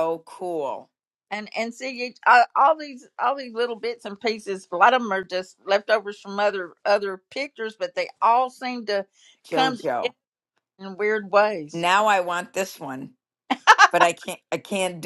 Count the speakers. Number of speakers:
two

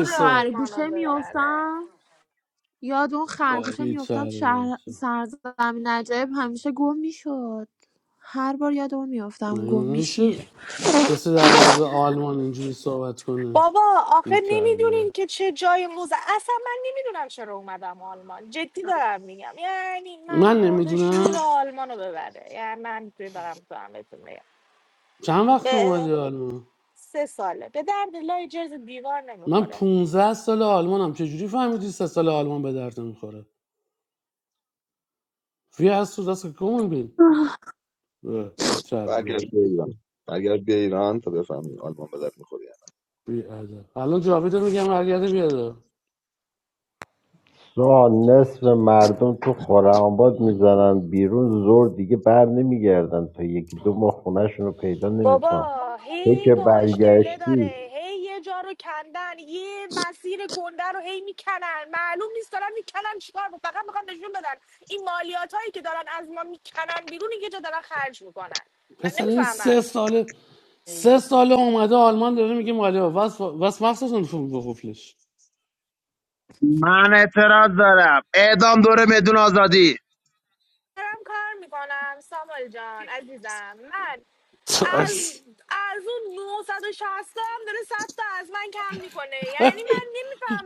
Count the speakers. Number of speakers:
six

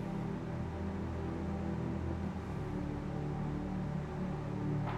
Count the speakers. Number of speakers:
zero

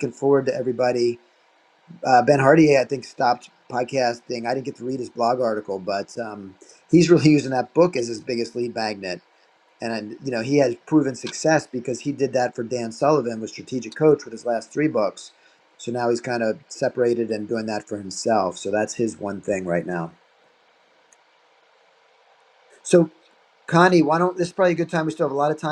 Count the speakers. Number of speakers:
one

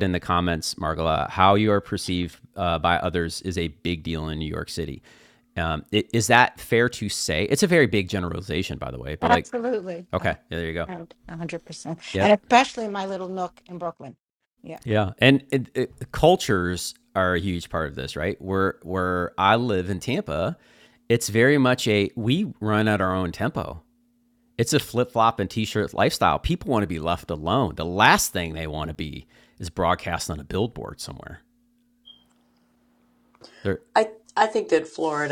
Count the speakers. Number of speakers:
three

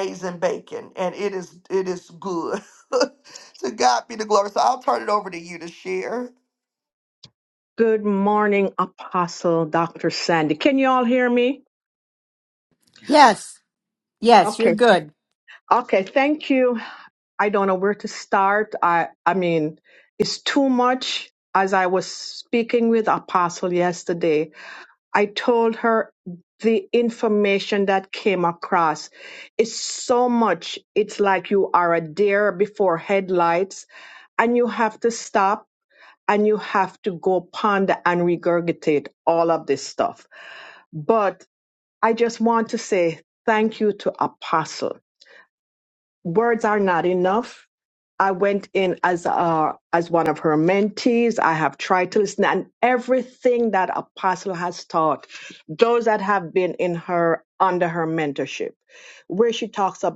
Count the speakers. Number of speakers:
three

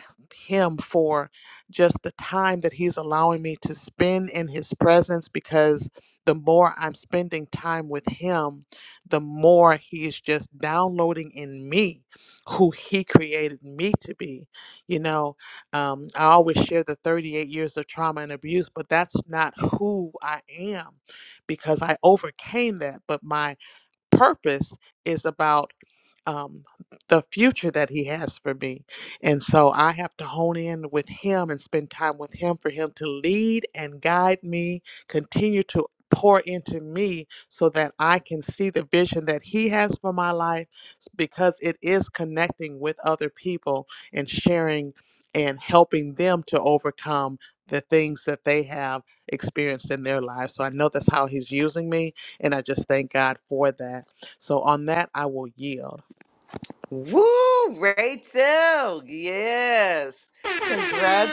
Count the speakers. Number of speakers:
two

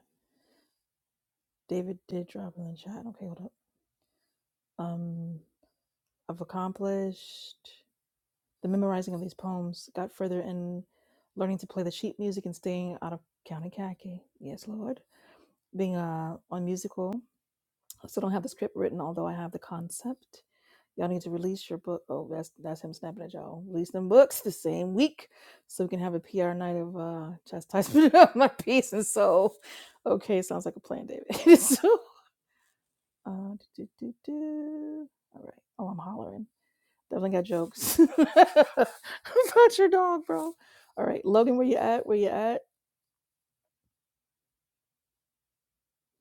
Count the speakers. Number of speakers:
one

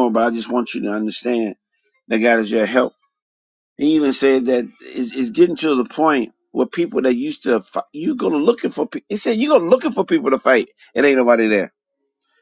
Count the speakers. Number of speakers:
one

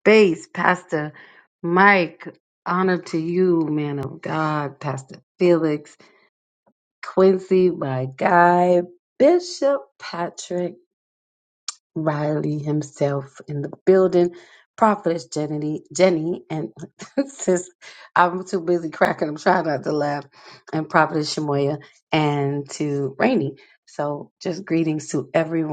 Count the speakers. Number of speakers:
one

